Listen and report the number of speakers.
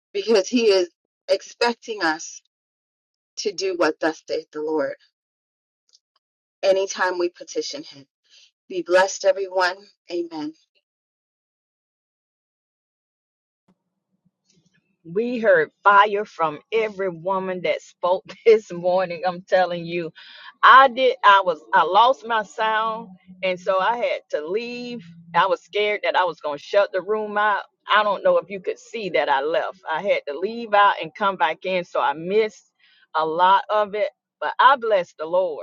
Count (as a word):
two